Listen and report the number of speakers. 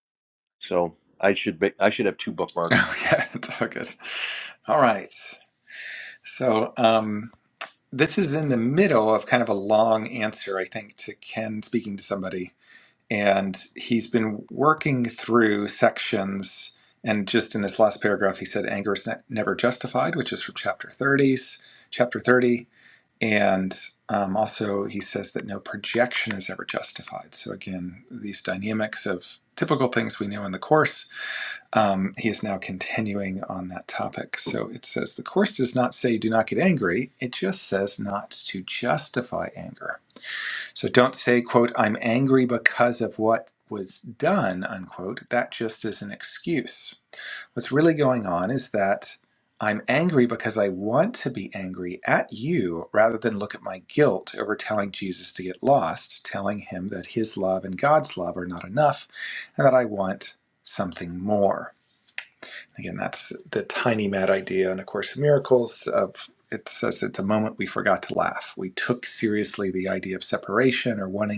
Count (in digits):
2